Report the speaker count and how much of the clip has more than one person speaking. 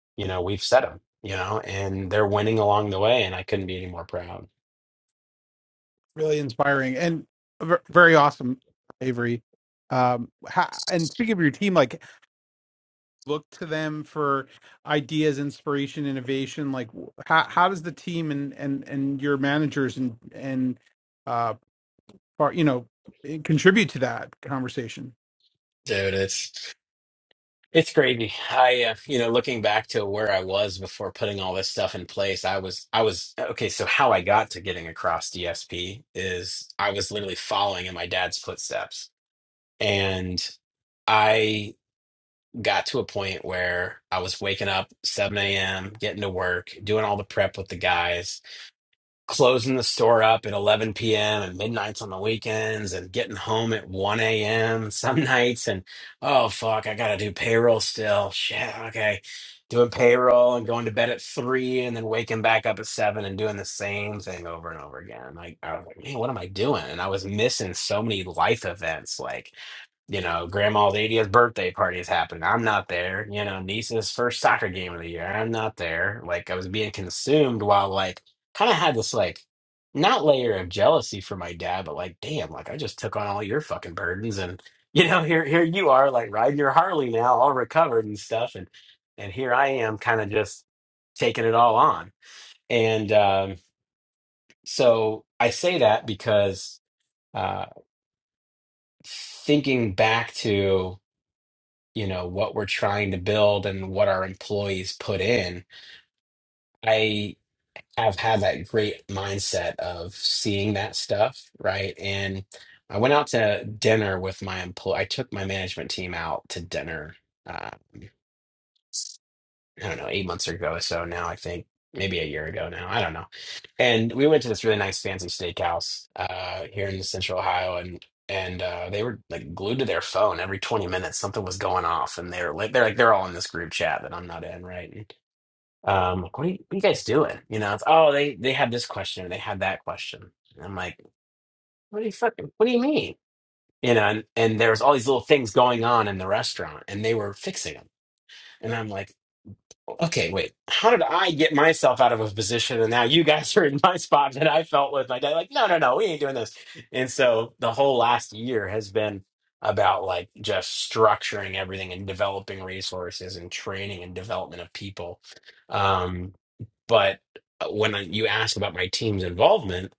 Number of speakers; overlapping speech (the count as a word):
two, no overlap